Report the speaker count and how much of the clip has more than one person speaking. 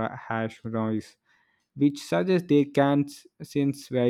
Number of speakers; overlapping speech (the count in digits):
1, no overlap